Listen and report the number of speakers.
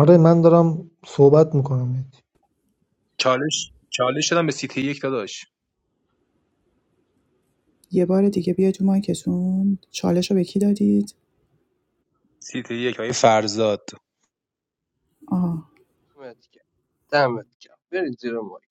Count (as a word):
four